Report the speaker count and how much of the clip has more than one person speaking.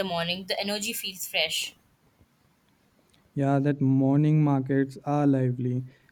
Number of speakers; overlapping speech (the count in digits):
2, no overlap